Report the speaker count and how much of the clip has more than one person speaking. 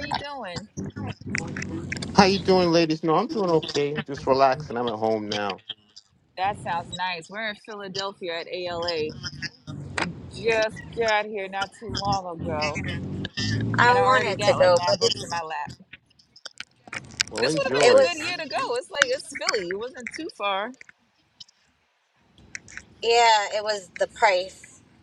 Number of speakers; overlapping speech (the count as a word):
three, about 9%